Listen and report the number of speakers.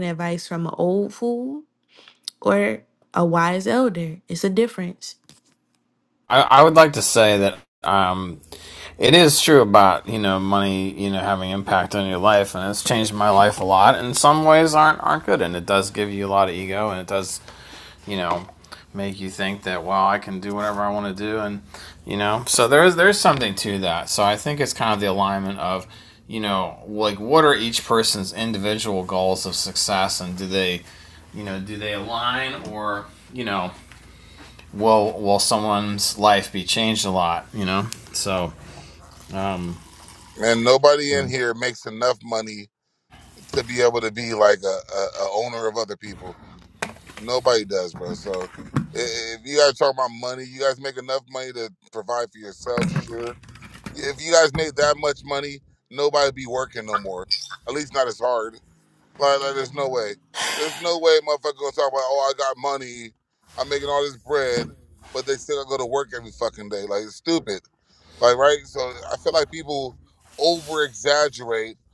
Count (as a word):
three